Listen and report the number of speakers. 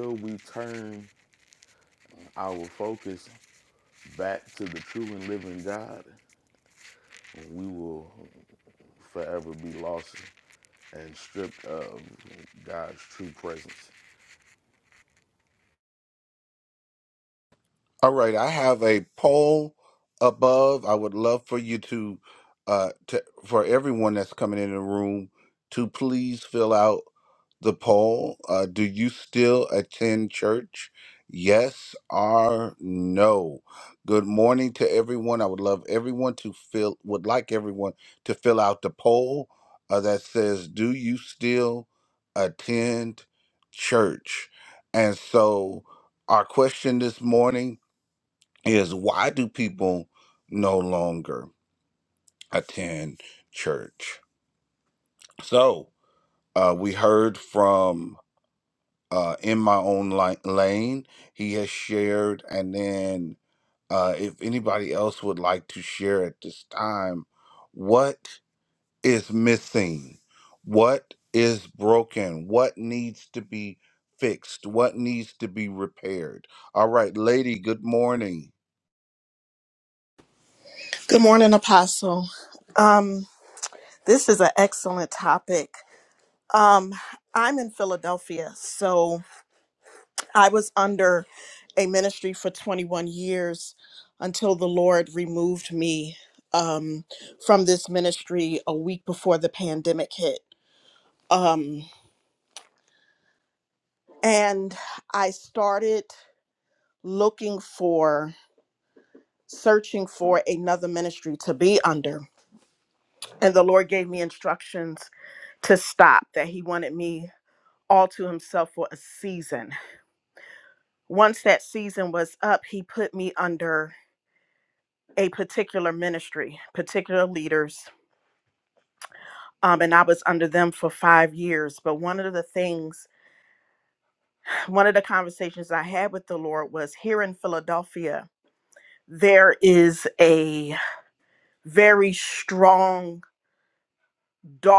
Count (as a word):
three